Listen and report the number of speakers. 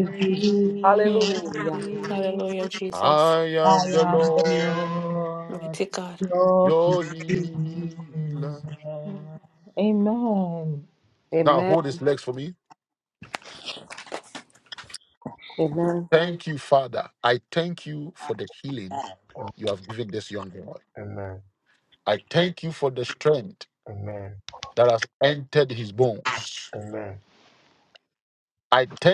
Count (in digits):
5